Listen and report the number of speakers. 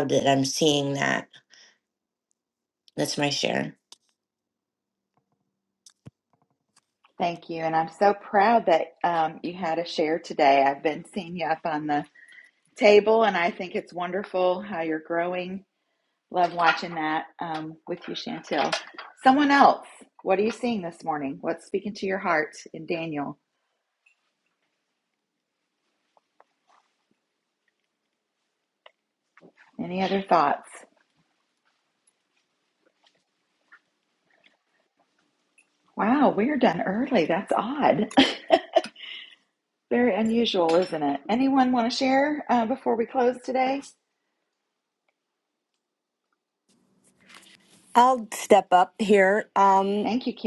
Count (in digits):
3